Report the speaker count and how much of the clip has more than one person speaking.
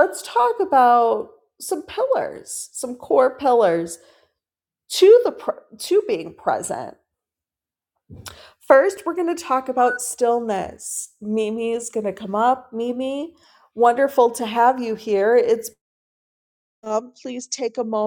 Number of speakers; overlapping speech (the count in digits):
1, no overlap